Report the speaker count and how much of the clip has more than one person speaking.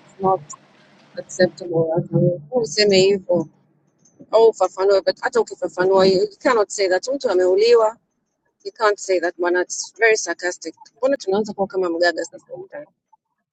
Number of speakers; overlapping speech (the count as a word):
one, no overlap